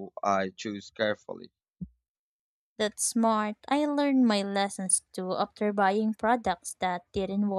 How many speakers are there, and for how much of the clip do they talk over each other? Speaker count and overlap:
two, no overlap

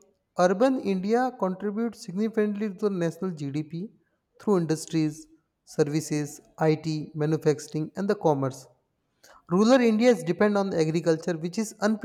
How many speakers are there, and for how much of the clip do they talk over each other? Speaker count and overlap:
one, no overlap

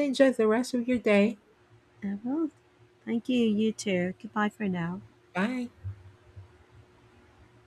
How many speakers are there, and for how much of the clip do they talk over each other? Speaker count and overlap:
two, no overlap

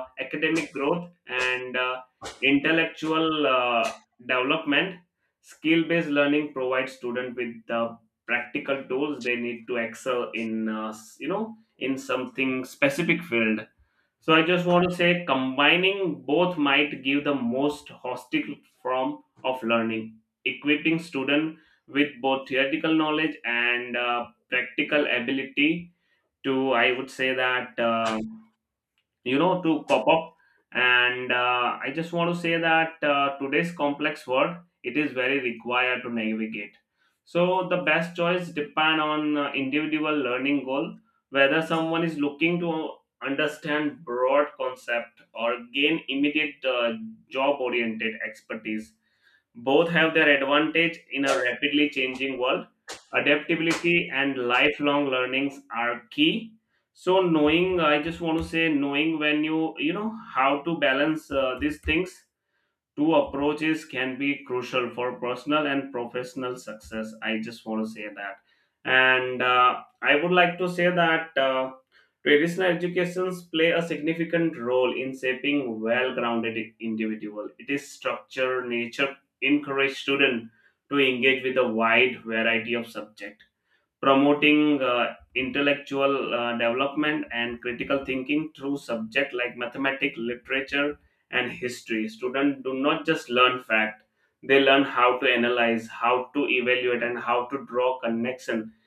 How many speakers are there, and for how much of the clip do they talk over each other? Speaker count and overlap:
one, no overlap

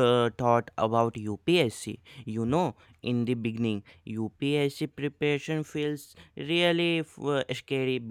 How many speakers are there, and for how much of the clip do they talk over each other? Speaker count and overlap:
one, no overlap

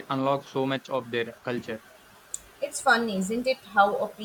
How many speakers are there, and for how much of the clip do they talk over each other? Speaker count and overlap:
two, no overlap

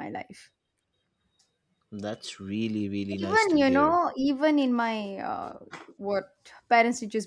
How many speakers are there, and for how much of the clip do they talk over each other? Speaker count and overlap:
two, about 11%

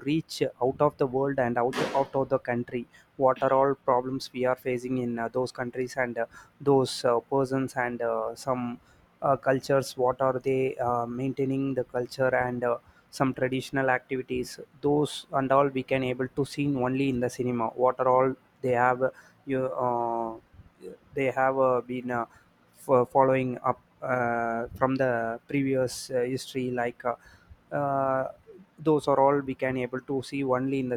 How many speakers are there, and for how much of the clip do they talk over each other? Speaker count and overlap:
one, no overlap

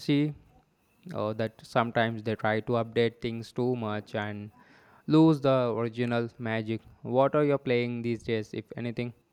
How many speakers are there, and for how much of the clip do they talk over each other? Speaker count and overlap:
one, no overlap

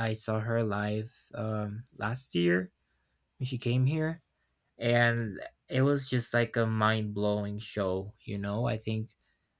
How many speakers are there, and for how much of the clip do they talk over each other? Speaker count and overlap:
one, no overlap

